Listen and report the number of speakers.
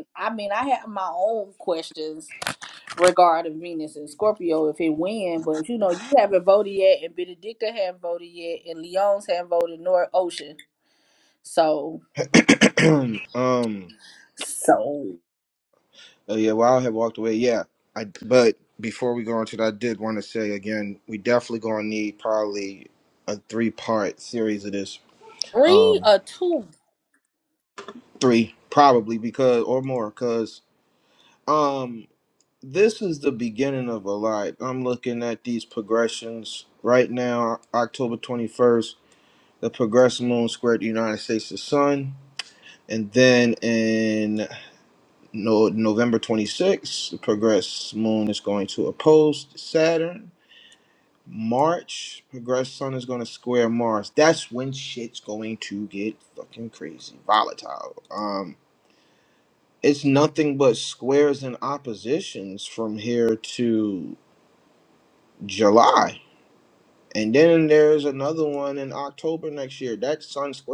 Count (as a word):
two